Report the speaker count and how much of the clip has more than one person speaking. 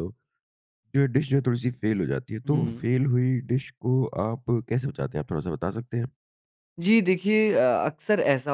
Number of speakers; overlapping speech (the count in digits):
2, about 4%